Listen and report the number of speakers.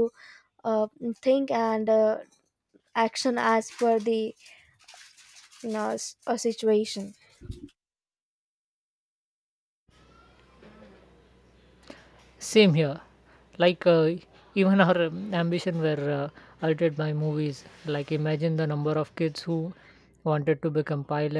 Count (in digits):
2